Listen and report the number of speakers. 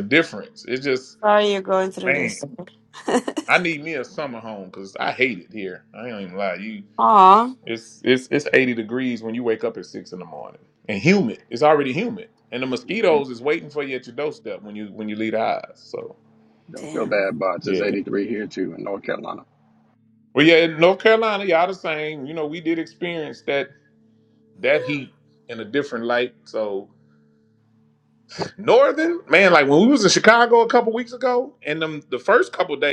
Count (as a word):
three